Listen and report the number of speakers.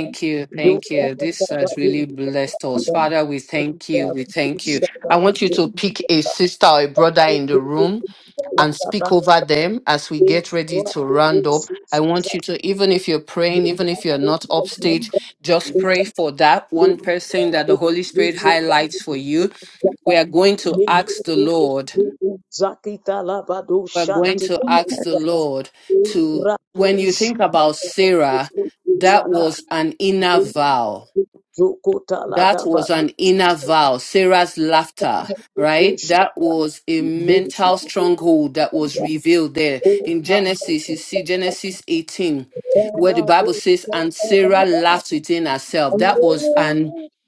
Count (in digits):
2